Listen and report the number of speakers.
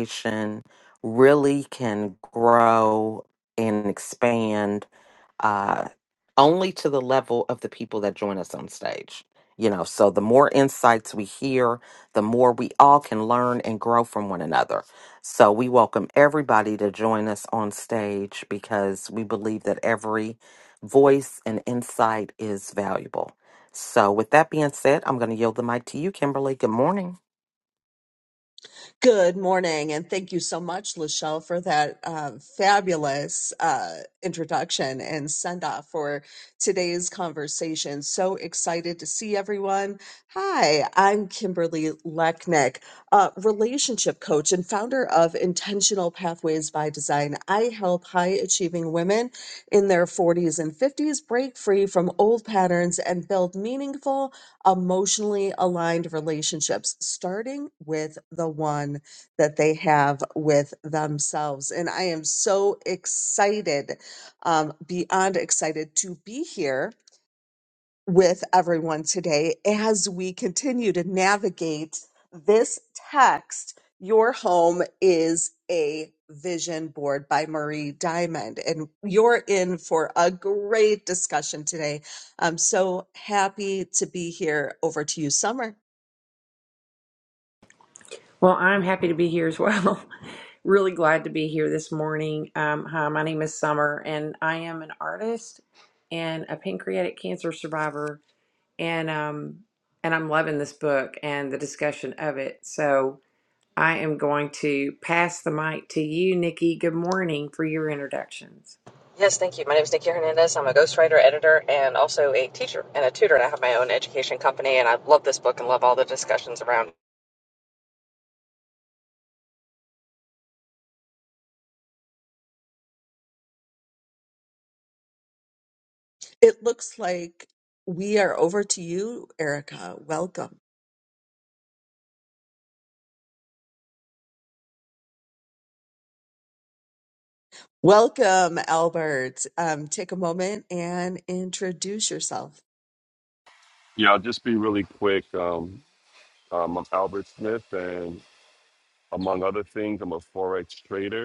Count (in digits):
5